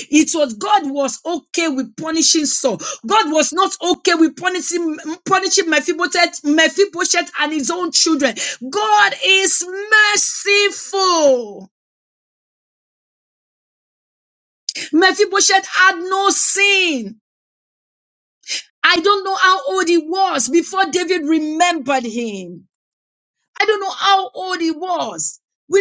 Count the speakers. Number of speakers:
1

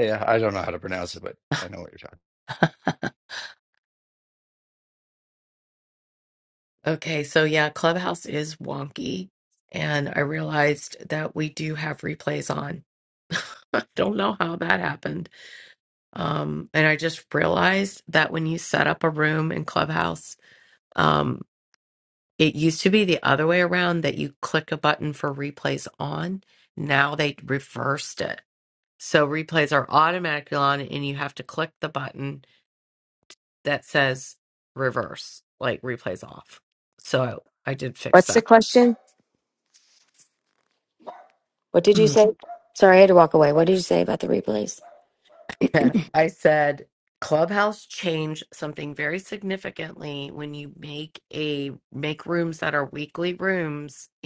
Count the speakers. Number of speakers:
3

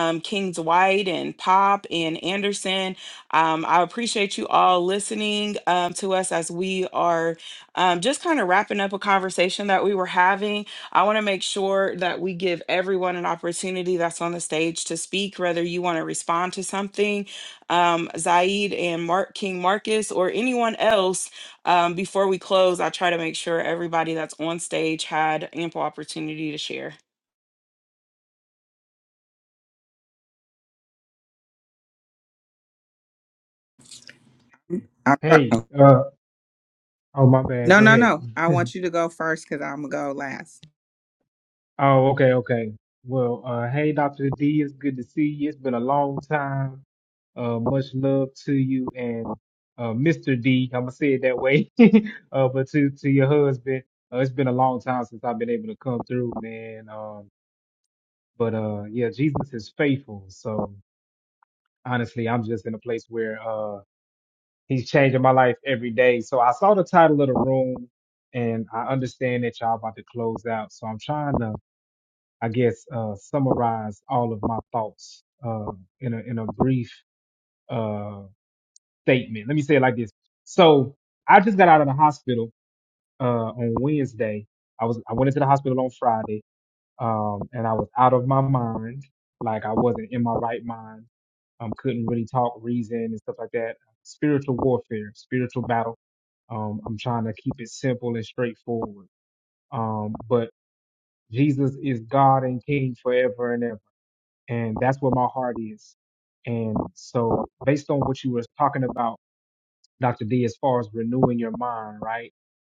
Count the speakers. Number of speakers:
3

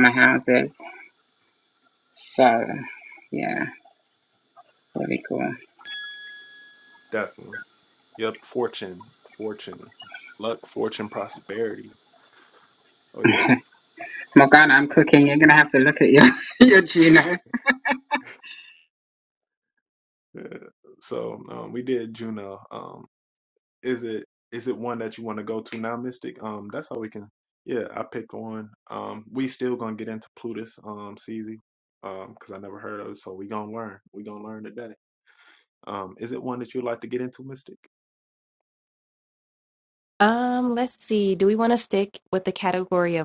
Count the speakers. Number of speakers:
3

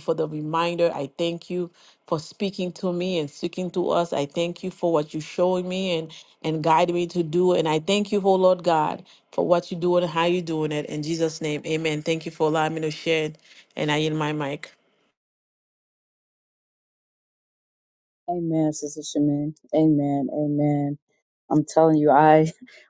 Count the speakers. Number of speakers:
2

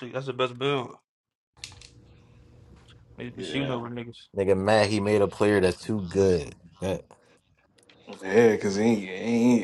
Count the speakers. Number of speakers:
3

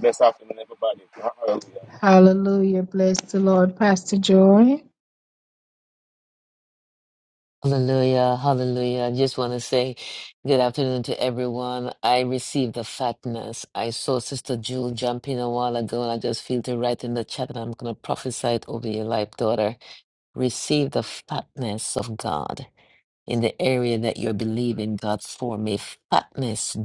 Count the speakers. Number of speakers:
3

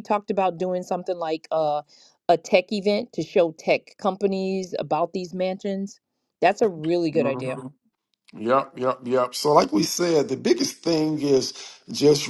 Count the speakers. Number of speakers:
2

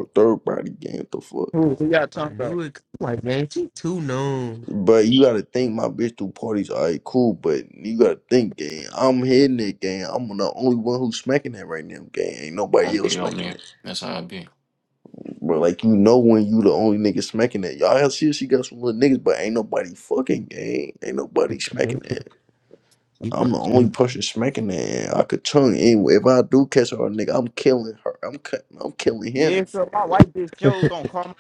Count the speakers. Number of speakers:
4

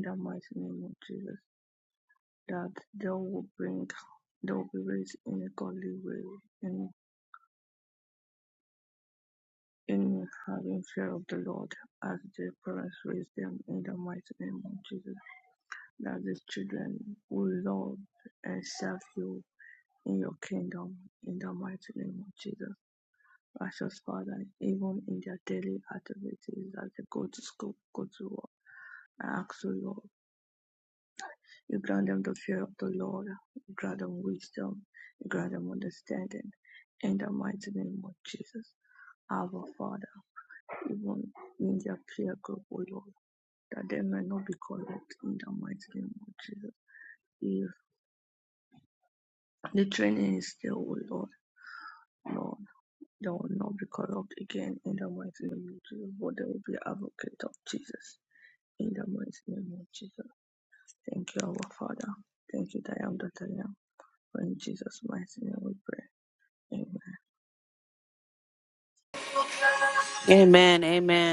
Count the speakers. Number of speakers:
2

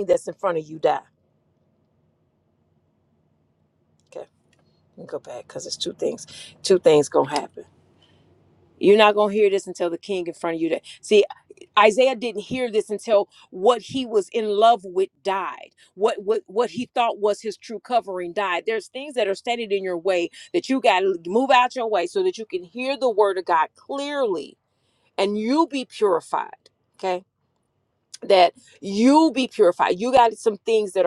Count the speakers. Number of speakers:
1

